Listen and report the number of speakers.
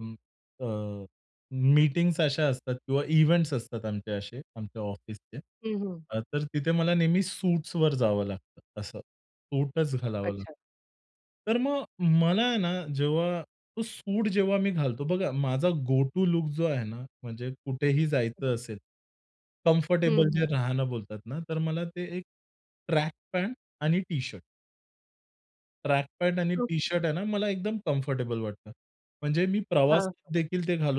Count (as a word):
two